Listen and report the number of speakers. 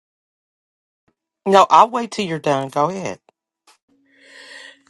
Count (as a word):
one